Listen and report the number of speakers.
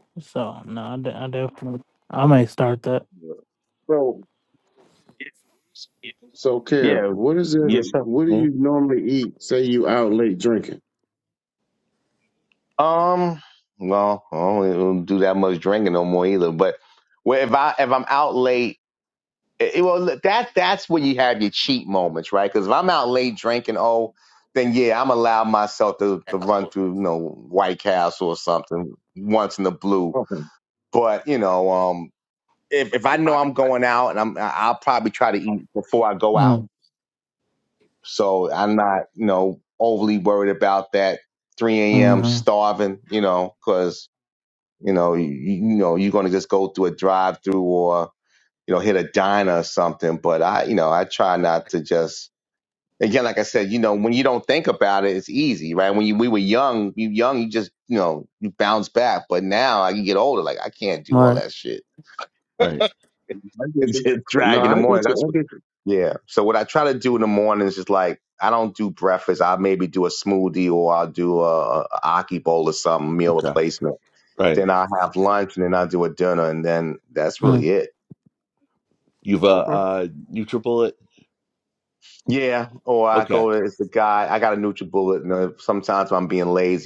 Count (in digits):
4